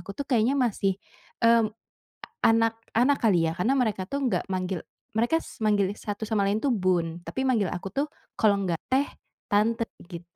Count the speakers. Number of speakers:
1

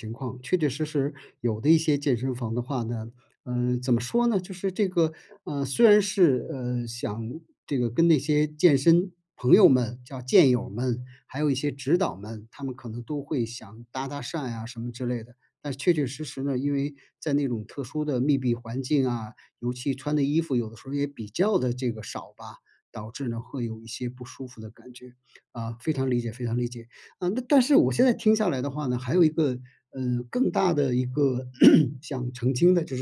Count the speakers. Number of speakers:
1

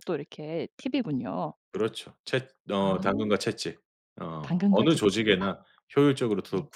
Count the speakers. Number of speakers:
2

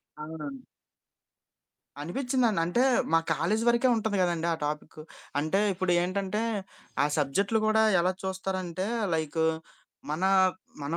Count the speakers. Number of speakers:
1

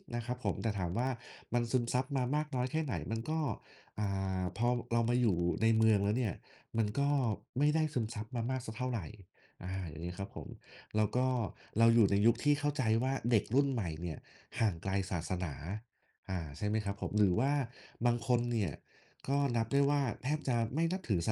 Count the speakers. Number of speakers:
1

